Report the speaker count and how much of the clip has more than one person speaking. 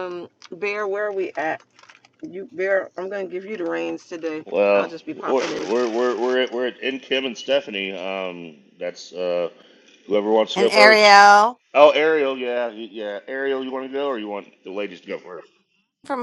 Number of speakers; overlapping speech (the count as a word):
three, about 11%